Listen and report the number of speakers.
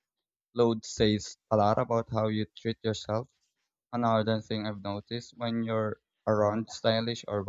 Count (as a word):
one